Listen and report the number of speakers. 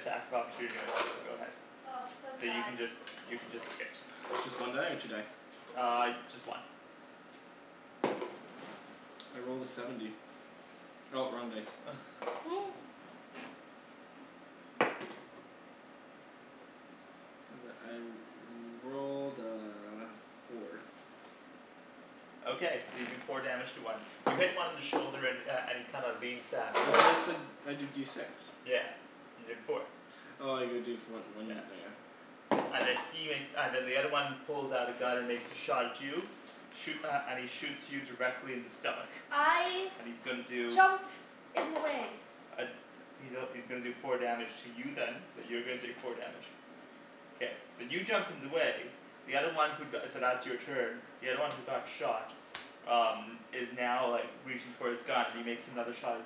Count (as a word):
three